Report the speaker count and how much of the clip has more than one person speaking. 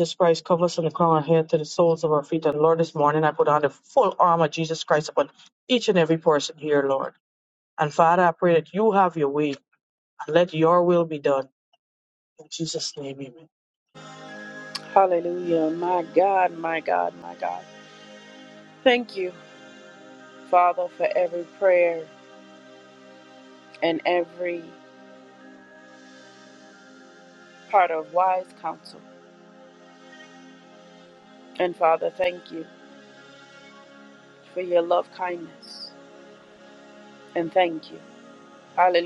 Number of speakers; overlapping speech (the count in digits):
2, no overlap